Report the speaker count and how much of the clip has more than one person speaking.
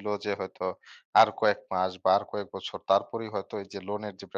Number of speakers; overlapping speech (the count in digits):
1, no overlap